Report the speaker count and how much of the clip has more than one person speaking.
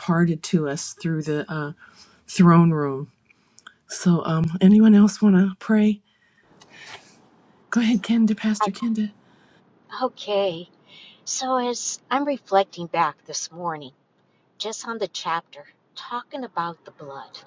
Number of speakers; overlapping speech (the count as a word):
two, about 1%